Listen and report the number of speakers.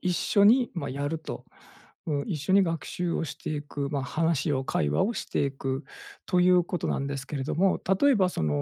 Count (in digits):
1